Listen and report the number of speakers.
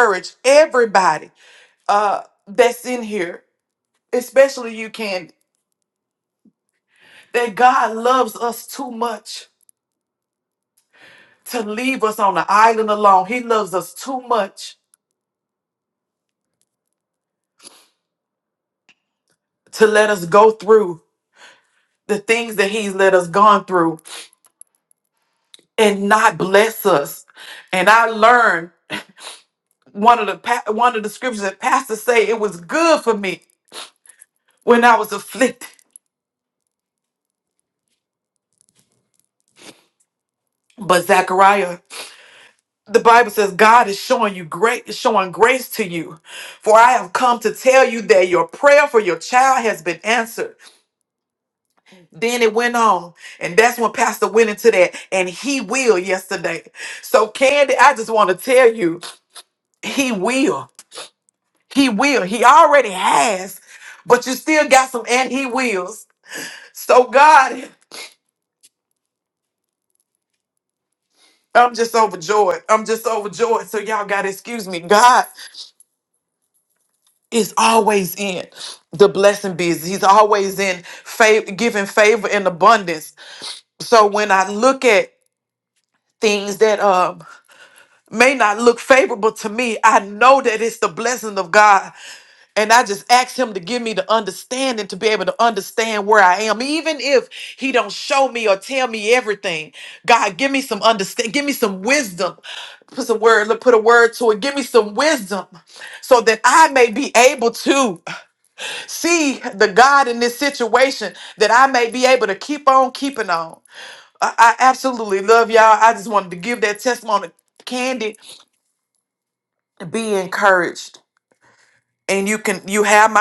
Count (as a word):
one